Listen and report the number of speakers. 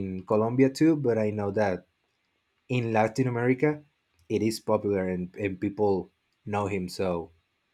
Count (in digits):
1